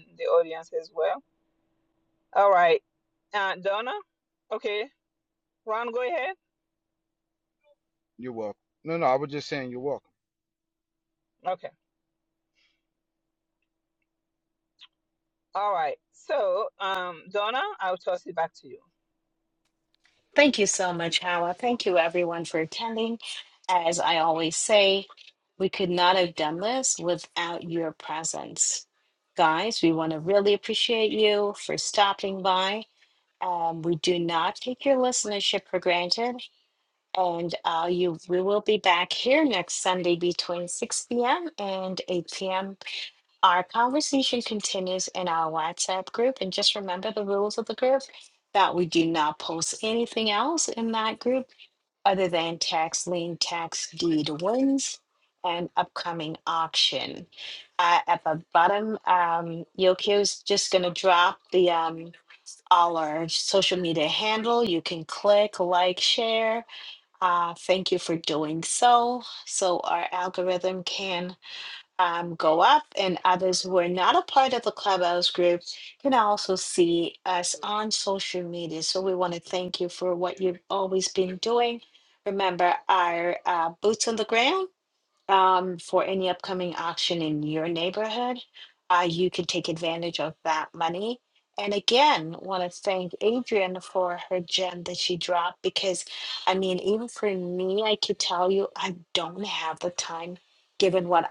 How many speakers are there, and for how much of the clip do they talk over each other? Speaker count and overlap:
3, no overlap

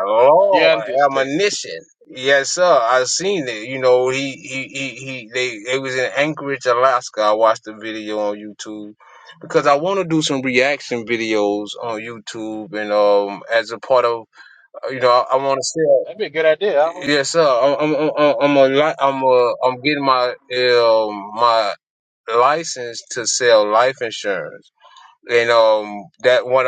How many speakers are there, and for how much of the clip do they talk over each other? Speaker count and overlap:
2, about 3%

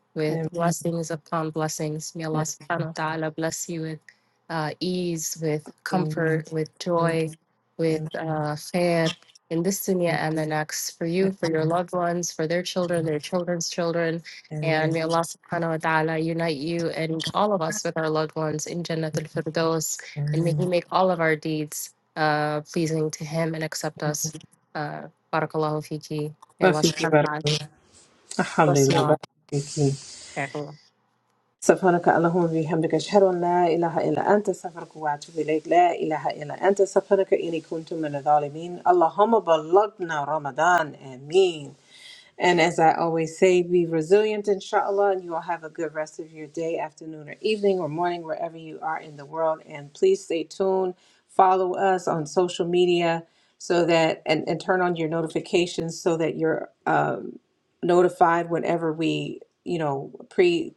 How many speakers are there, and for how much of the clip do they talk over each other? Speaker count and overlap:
2, about 3%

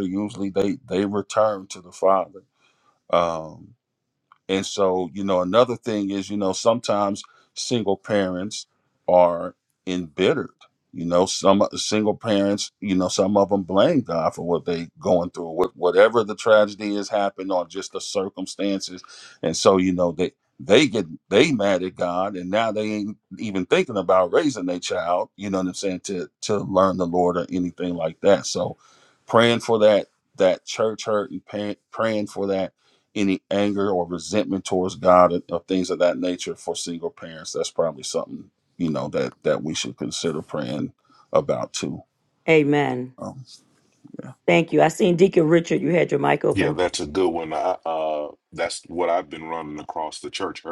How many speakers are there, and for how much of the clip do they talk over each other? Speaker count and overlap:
3, under 1%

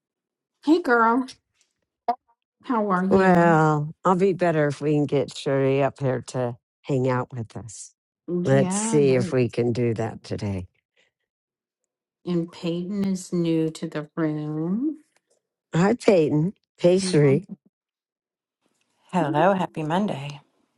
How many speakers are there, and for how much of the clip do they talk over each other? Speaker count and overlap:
3, about 8%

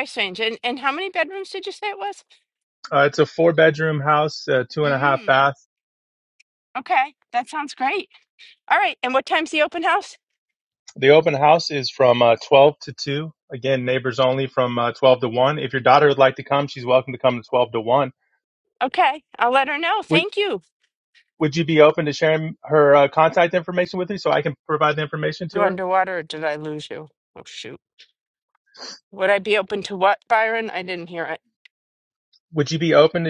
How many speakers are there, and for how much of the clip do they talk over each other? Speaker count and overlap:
2, about 2%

